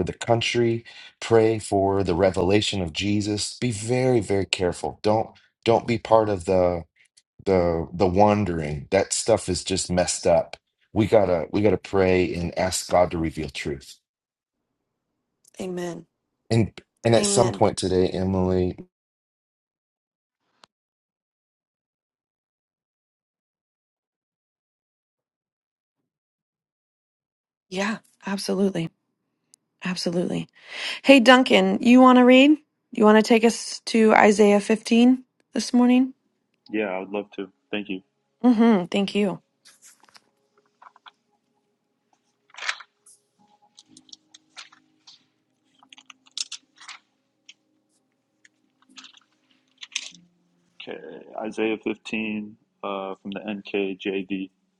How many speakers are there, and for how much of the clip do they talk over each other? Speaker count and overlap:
three, about 1%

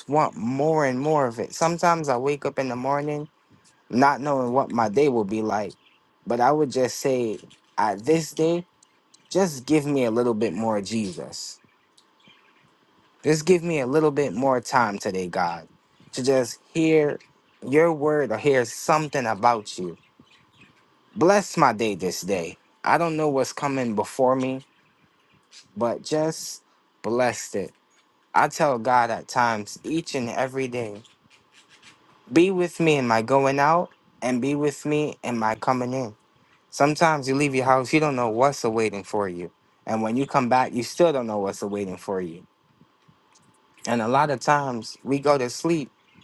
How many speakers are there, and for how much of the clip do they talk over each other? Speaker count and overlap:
one, no overlap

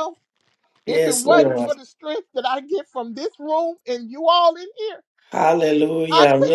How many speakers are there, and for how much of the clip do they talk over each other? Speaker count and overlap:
two, about 20%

